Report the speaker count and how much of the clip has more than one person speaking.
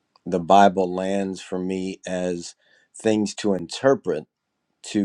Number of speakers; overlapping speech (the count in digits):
1, no overlap